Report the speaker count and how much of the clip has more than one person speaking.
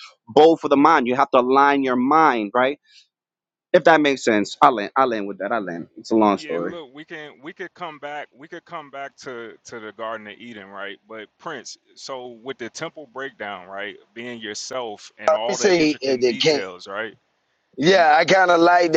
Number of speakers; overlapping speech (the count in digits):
3, about 9%